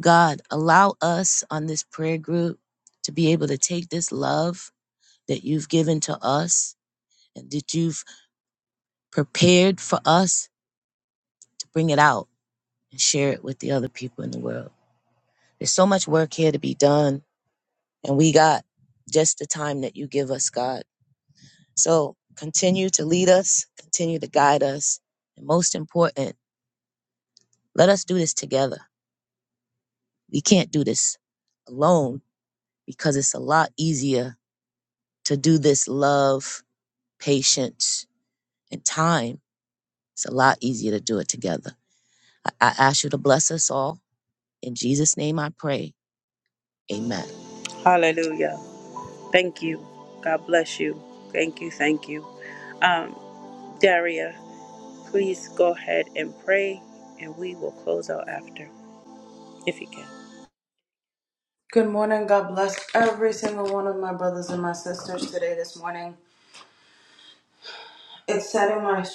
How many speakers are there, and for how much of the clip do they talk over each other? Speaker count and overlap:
3, no overlap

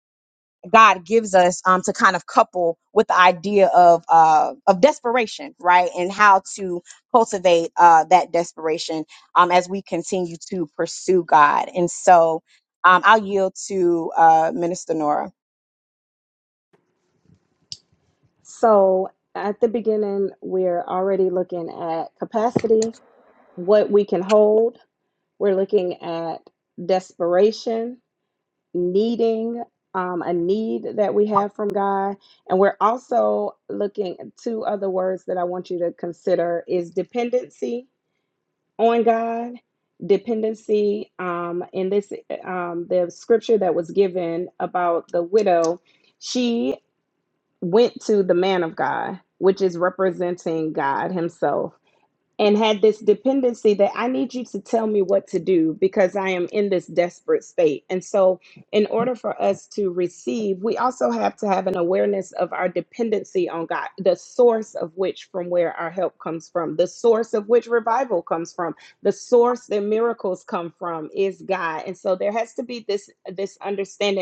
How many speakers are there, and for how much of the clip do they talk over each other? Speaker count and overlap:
2, no overlap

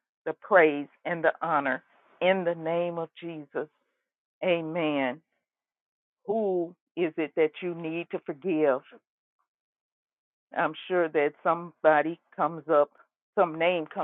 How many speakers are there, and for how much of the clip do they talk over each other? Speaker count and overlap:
1, no overlap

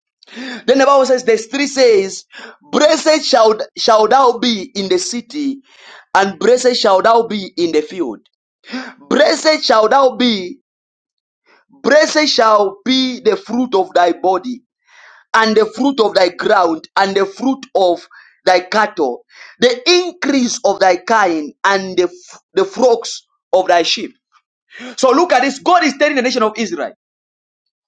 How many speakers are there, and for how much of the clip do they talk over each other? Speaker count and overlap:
1, no overlap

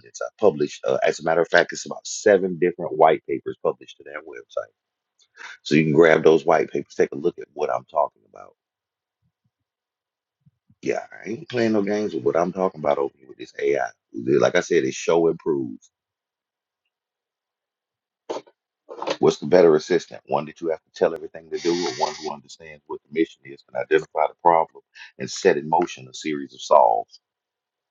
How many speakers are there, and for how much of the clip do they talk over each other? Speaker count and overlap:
1, no overlap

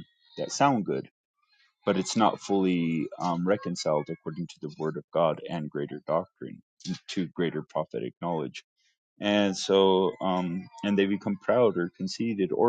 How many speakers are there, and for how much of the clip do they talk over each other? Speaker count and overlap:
1, no overlap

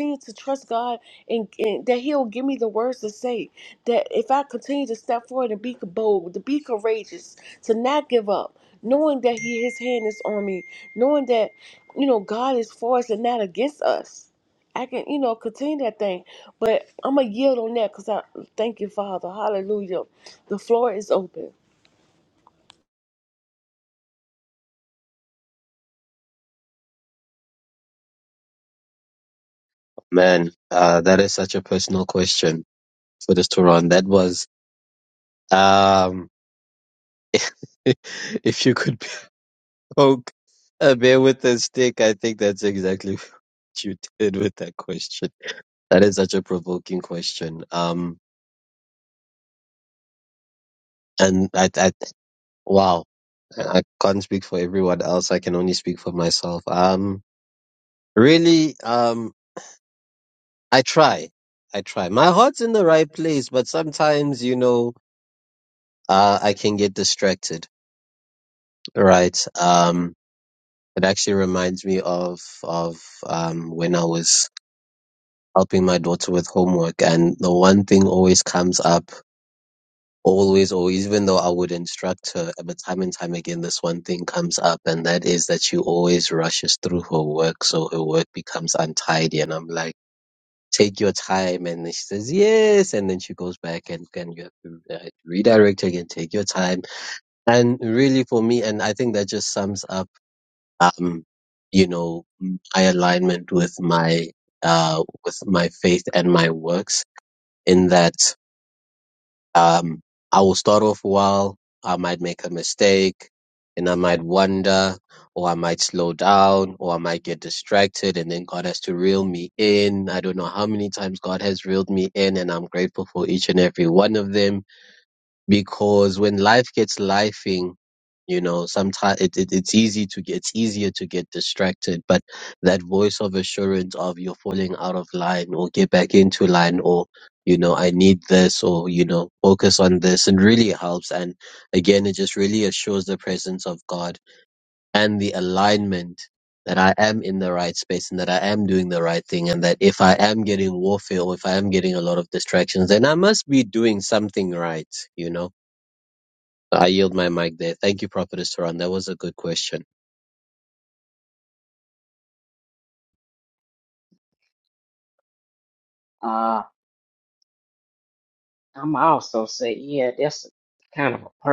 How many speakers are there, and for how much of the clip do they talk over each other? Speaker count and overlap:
3, no overlap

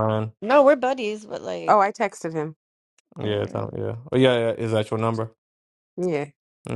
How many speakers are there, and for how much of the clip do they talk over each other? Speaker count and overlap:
3, about 7%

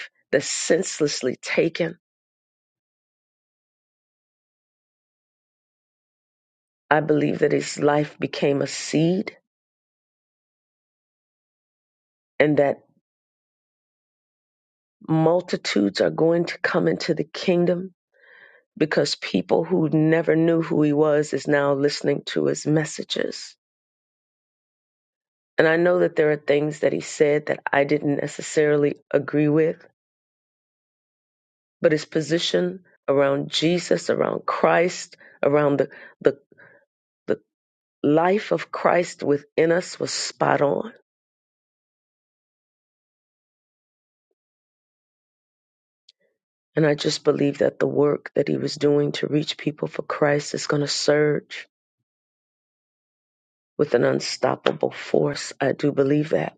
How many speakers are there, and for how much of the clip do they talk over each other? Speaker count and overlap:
1, no overlap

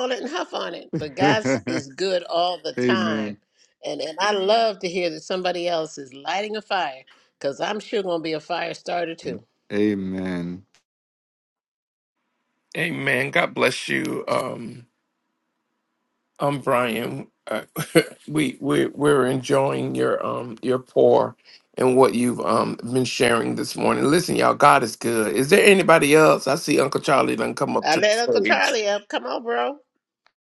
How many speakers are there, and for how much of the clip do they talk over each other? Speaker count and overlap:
3, about 5%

